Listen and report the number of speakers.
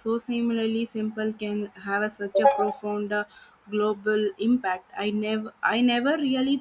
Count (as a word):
one